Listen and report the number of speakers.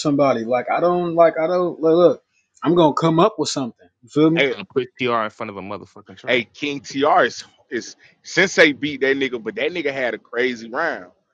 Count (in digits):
3